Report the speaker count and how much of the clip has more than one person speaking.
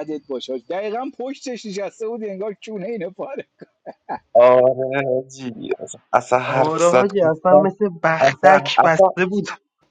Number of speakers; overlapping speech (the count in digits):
3, about 21%